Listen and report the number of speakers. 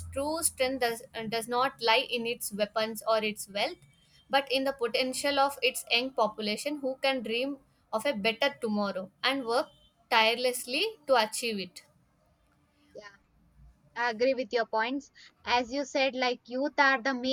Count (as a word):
two